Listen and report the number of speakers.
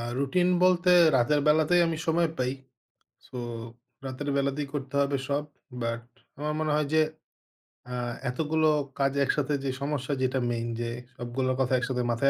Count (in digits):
1